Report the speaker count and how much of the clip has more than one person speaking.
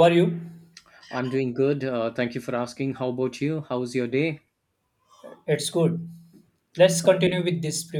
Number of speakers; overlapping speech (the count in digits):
2, no overlap